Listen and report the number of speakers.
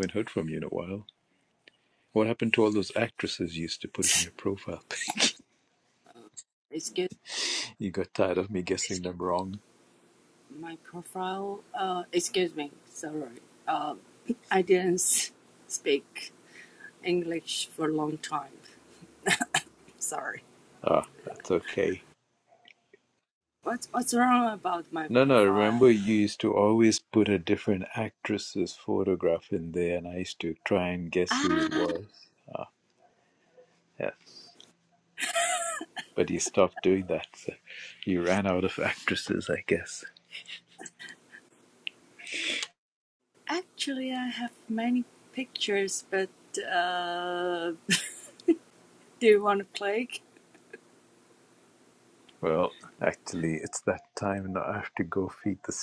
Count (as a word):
two